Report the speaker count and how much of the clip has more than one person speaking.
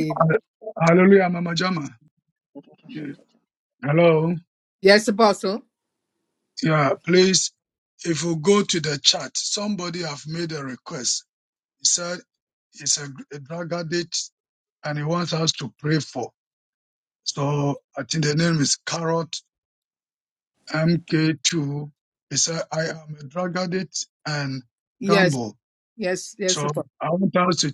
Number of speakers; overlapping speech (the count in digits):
2, about 2%